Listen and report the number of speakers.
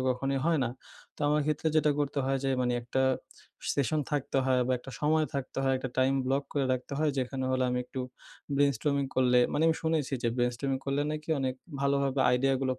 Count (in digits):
1